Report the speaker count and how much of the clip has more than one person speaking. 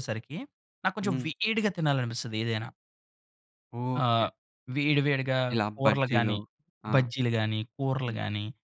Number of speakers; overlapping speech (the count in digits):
2, about 14%